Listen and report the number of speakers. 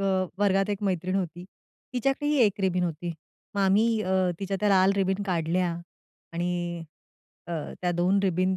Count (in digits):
1